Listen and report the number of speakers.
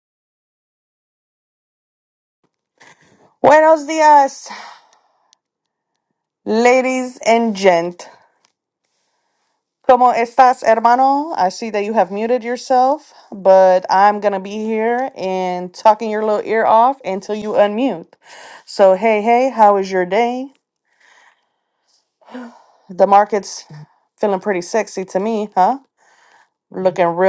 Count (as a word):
one